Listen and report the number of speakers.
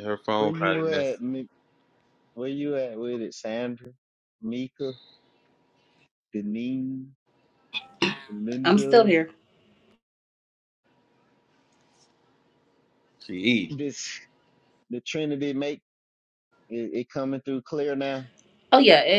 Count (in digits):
3